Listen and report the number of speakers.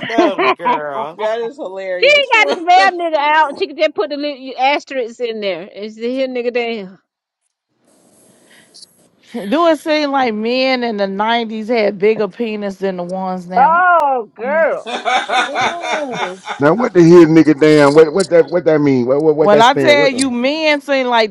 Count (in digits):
5